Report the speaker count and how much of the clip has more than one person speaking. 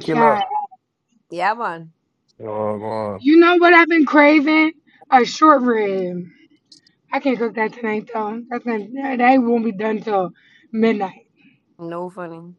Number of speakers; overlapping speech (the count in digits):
3, about 3%